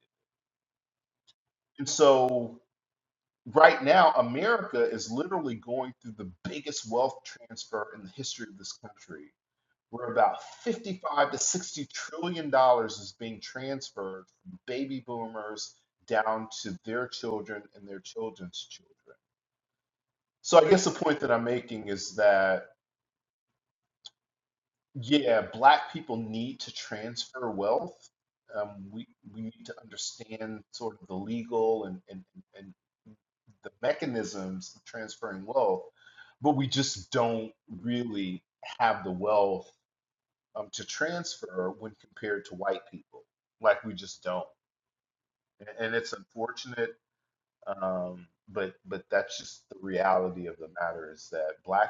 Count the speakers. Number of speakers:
one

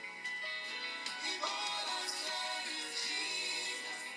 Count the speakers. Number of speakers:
zero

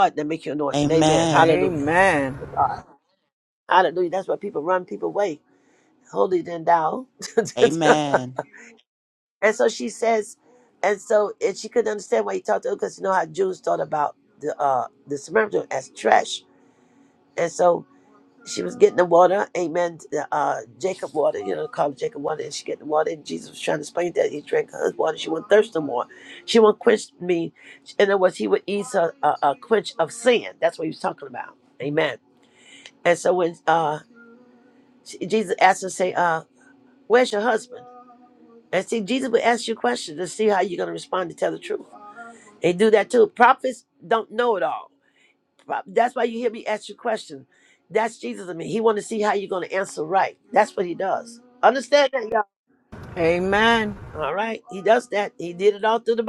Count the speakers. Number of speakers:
three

